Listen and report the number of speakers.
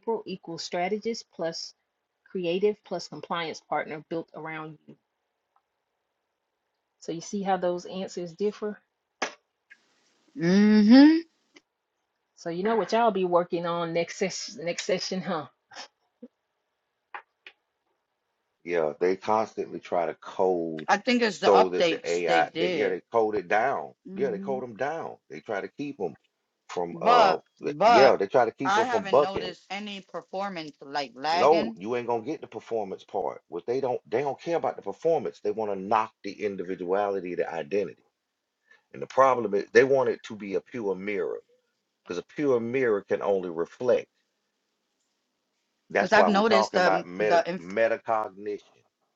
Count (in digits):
3